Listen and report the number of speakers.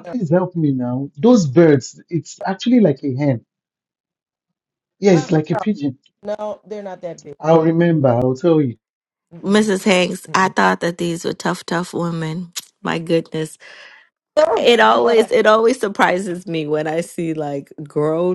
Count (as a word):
three